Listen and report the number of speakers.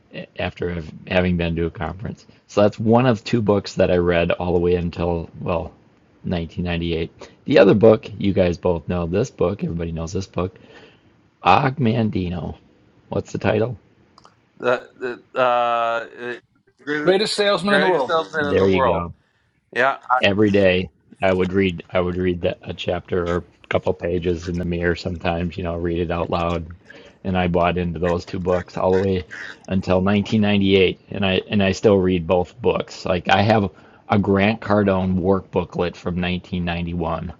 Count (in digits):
3